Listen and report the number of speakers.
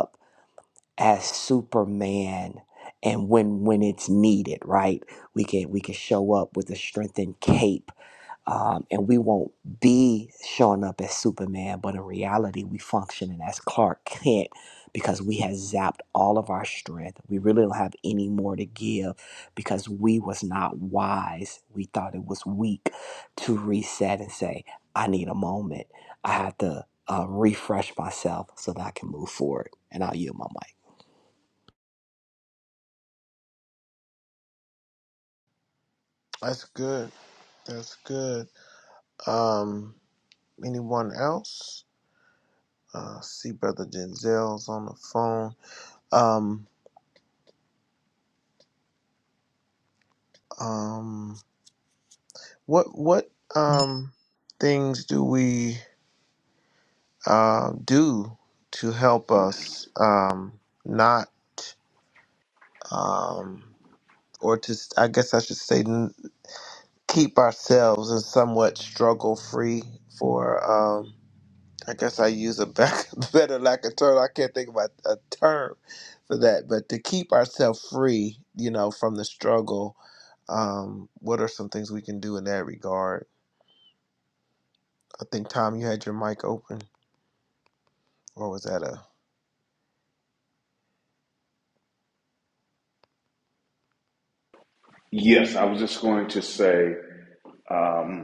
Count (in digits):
3